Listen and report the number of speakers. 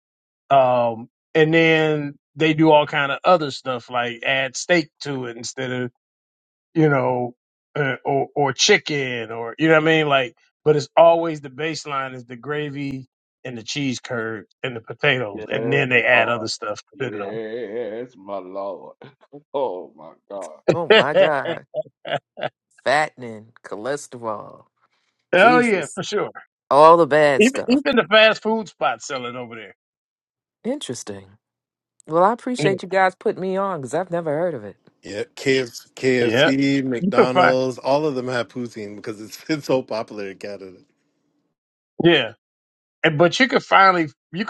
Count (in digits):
4